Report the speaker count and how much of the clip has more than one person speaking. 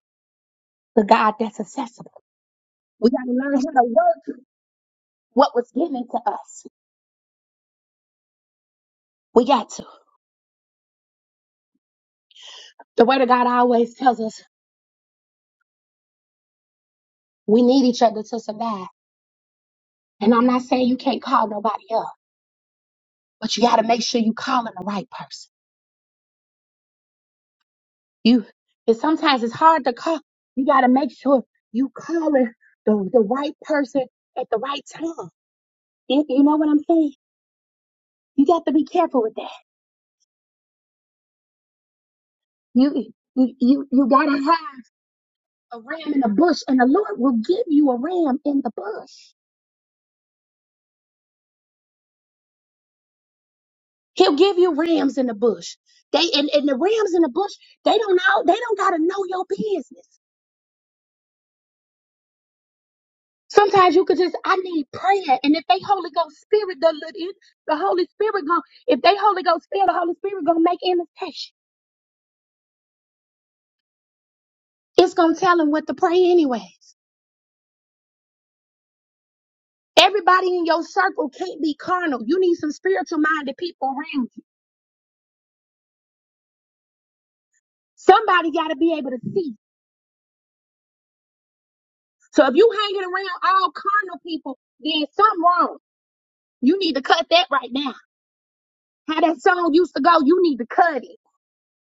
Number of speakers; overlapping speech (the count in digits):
1, no overlap